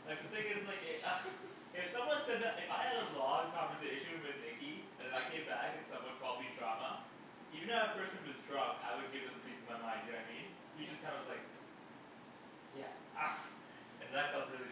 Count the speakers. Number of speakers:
1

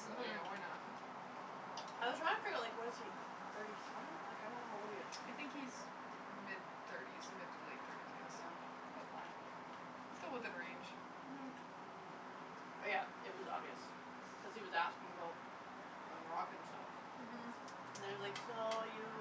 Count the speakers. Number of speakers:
2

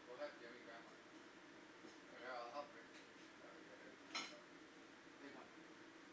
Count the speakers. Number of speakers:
1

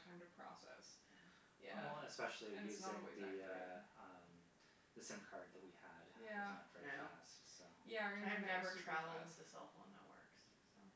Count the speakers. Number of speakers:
3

